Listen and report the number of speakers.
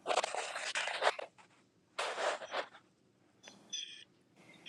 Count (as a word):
zero